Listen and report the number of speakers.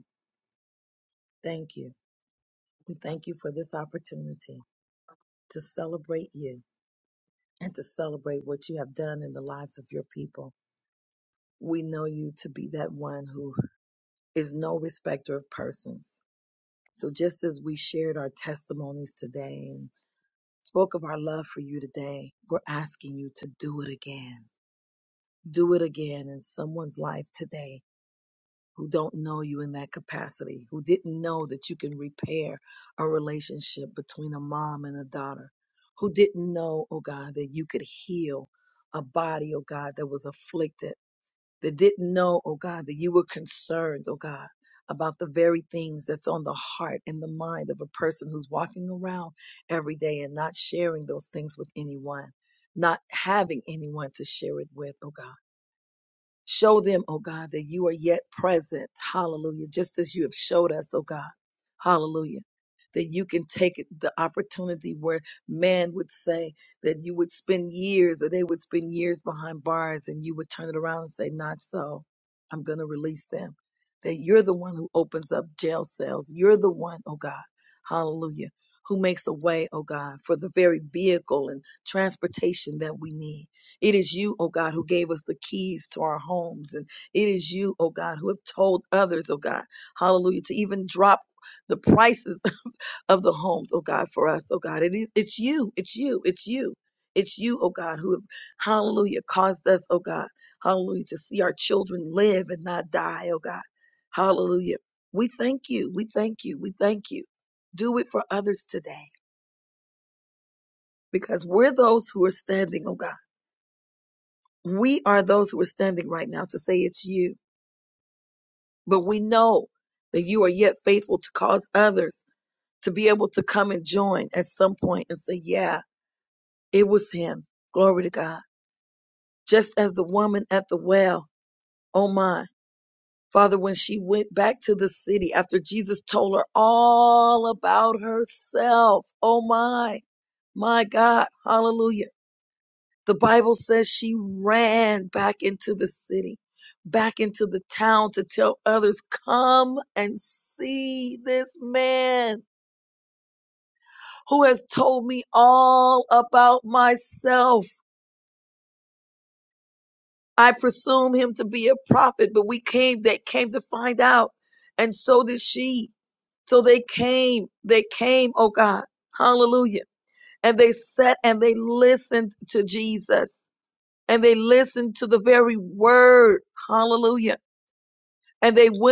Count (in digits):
1